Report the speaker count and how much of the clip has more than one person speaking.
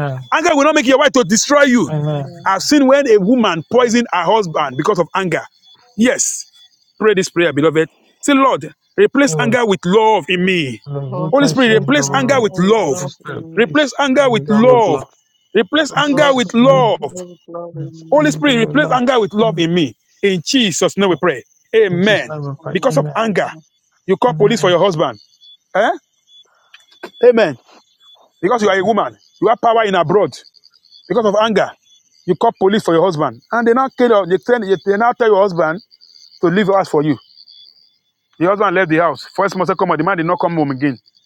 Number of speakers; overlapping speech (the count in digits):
3, about 23%